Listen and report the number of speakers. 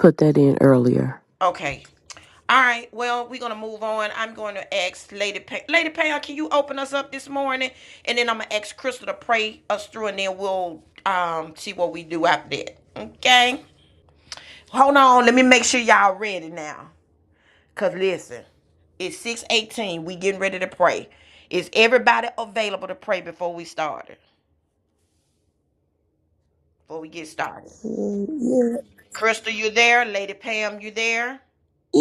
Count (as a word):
three